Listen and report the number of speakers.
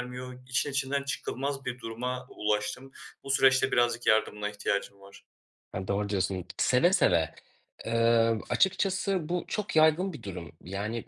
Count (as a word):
two